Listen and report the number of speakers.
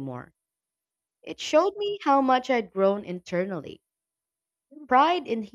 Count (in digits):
1